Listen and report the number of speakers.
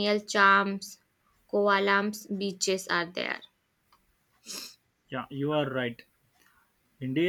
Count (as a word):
two